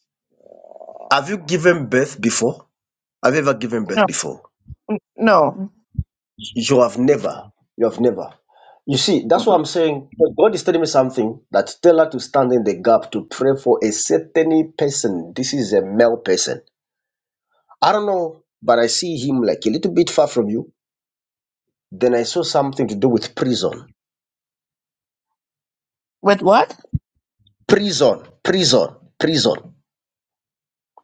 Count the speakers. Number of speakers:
two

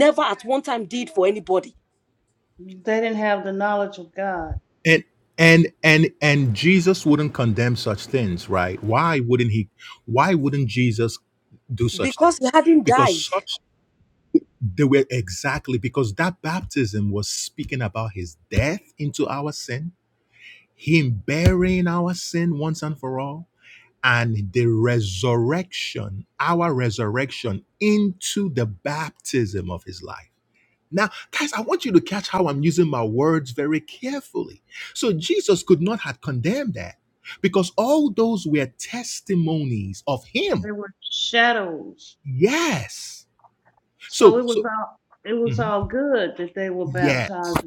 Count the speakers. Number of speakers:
three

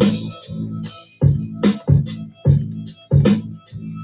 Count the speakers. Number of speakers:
zero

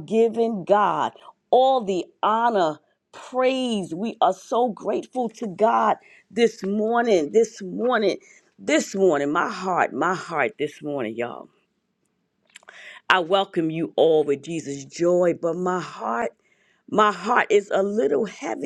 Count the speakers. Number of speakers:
one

